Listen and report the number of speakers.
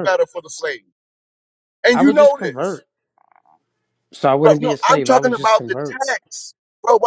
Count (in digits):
2